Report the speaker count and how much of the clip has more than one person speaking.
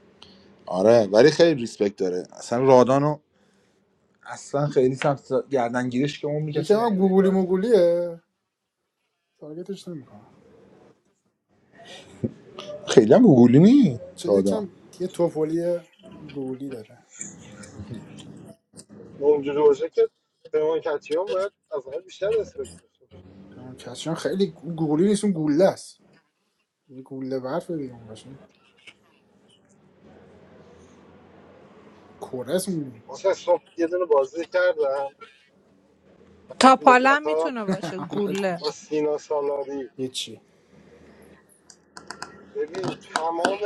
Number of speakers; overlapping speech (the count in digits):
4, about 4%